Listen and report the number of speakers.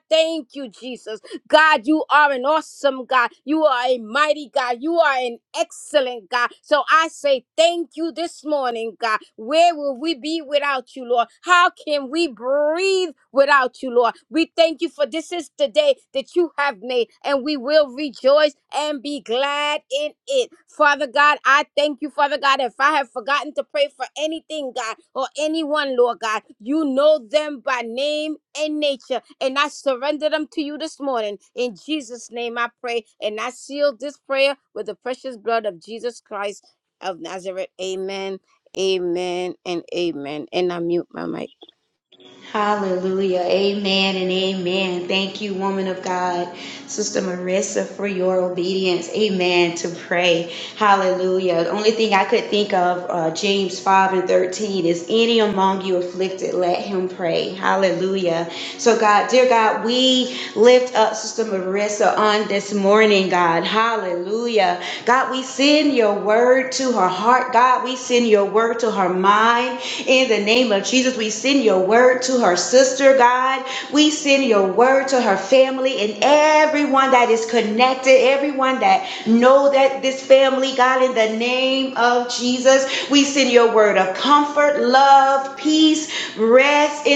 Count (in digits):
2